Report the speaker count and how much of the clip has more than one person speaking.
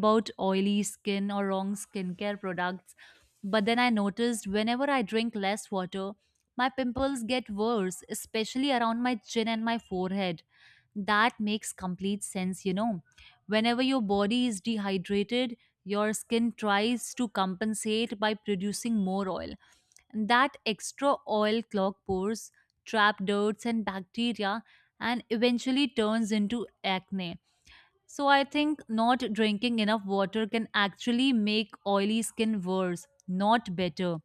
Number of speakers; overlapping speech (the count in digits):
1, no overlap